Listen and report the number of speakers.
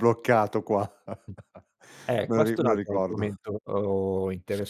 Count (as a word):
two